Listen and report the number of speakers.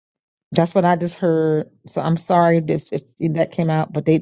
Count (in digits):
1